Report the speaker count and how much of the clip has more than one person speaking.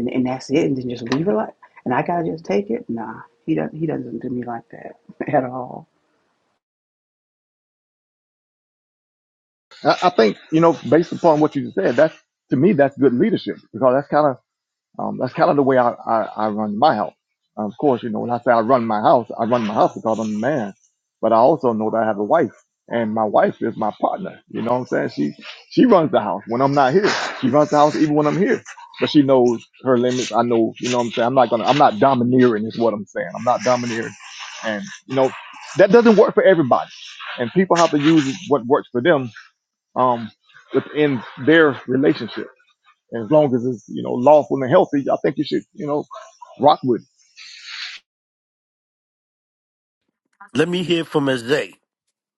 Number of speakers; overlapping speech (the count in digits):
3, no overlap